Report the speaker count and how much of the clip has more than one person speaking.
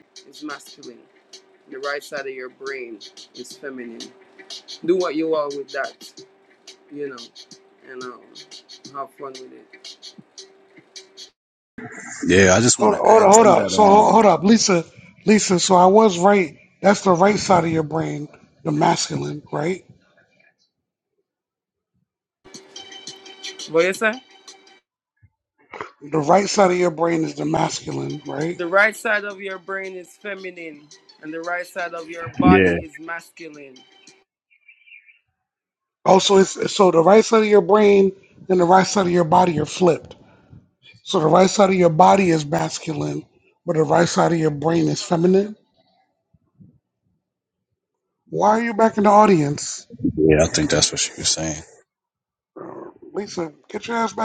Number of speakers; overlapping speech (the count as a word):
three, about 3%